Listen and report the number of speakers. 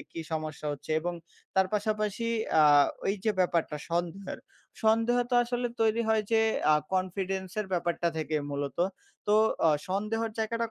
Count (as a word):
one